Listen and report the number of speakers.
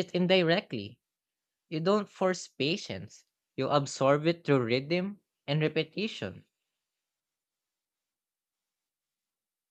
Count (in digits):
1